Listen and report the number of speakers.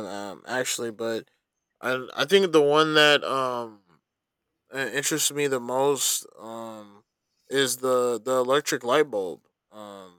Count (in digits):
1